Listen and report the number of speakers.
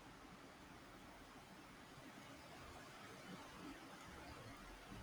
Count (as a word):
zero